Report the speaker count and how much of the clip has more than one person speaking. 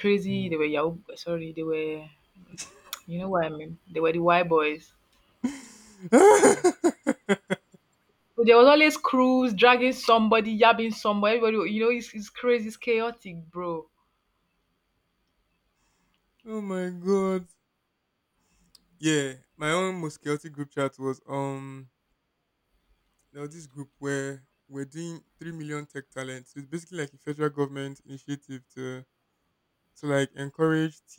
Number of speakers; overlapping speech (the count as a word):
two, about 1%